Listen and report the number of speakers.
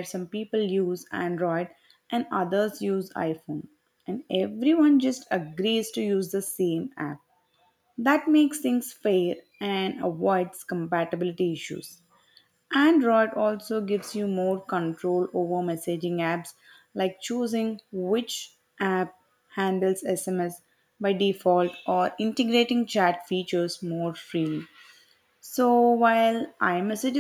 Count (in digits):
1